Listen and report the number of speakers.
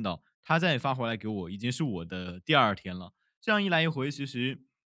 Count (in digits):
1